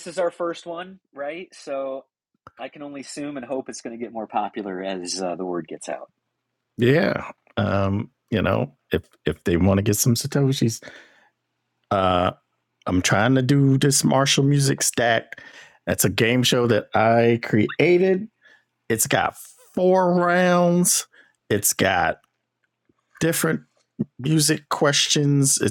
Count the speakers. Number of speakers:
two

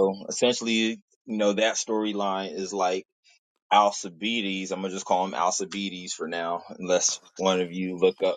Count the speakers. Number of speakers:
one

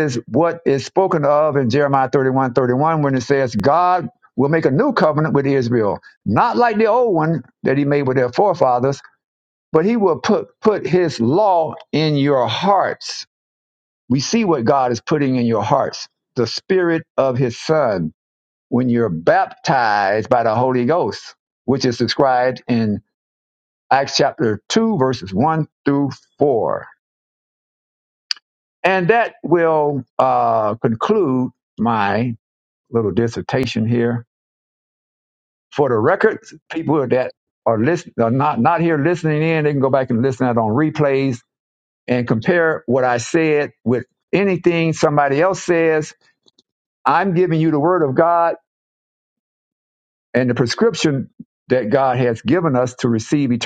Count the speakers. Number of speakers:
one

